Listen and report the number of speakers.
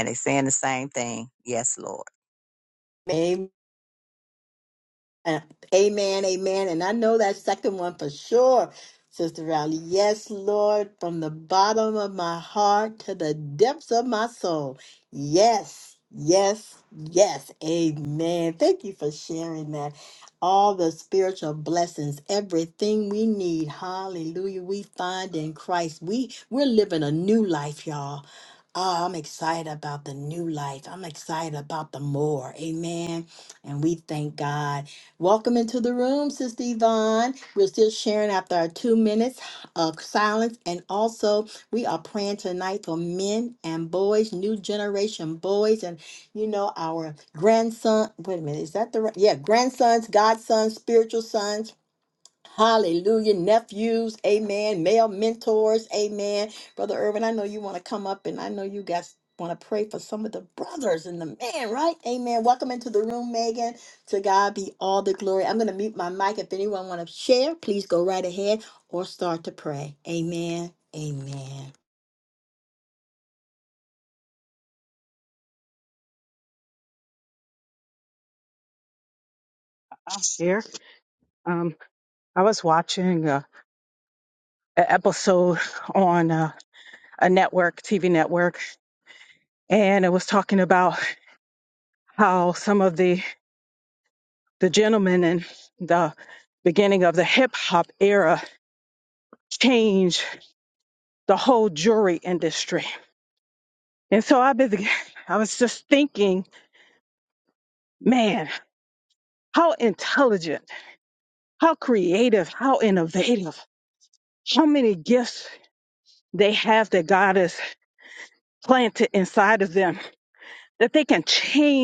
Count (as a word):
three